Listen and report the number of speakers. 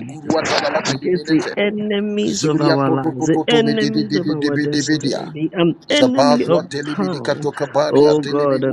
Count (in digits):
2